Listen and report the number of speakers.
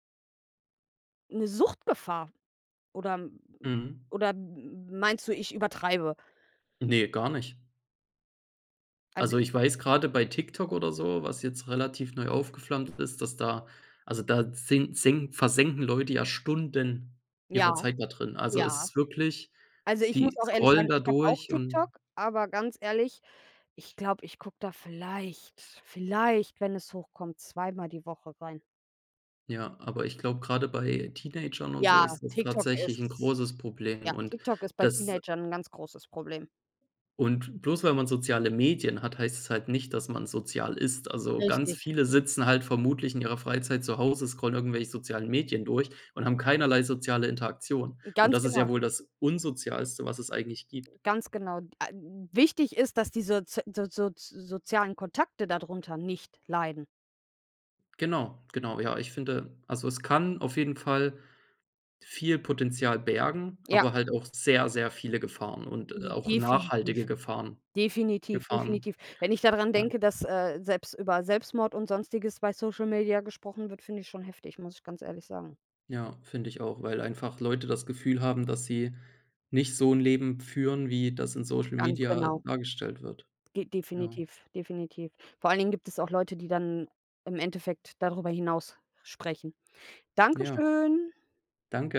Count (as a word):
two